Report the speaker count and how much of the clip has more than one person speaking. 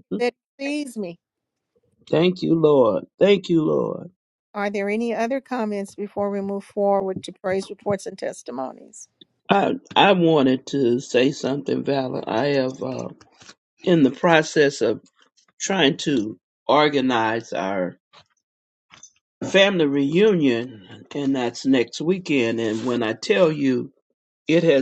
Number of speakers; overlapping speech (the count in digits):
2, no overlap